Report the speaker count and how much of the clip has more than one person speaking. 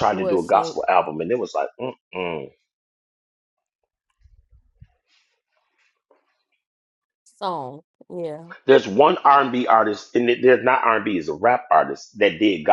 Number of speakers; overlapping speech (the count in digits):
2, about 5%